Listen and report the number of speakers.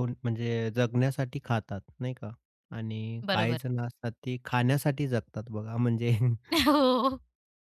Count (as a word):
two